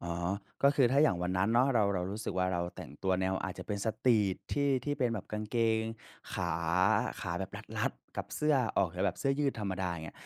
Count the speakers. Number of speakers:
1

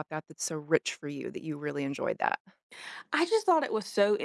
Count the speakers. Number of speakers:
2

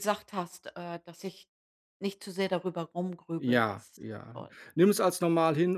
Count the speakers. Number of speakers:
2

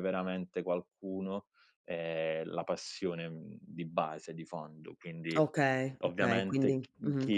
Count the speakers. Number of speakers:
2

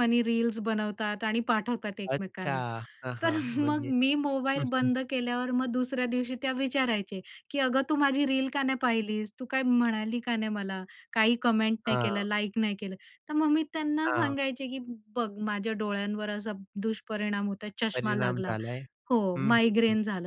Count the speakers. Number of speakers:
2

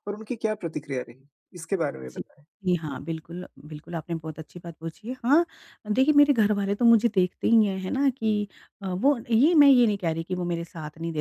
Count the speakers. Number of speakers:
2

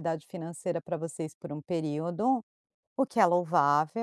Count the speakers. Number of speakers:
1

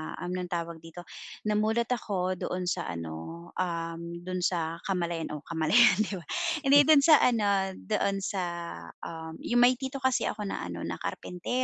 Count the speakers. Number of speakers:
1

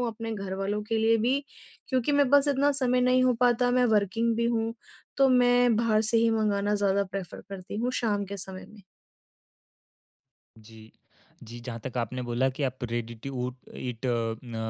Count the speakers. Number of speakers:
2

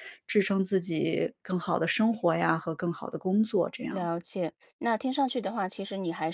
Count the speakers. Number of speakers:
2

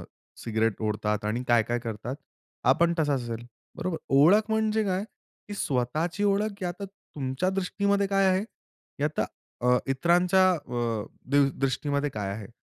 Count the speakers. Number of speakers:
1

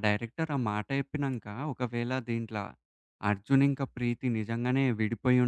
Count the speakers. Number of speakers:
1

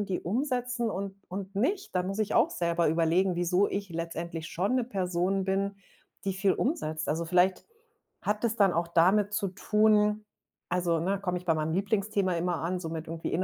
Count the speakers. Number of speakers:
1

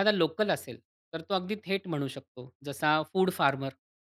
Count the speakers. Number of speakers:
1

